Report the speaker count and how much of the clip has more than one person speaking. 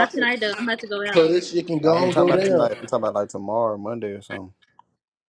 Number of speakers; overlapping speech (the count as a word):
three, about 28%